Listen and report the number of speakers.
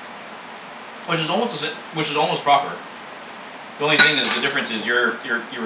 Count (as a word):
one